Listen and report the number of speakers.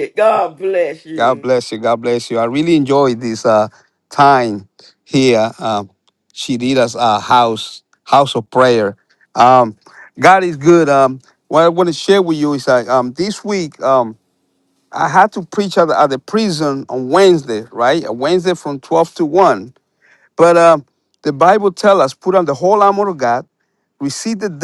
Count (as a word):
two